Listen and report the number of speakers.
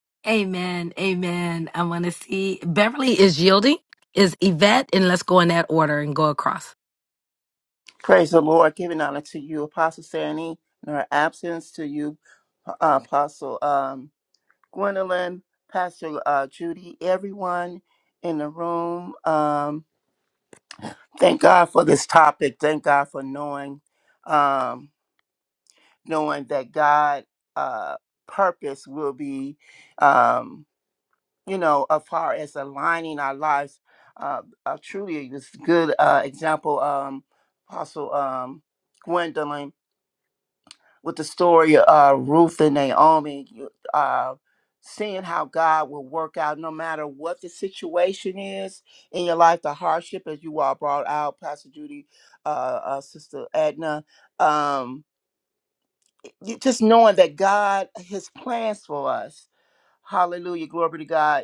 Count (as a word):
two